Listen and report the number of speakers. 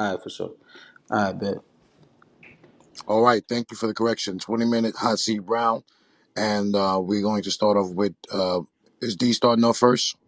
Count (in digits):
2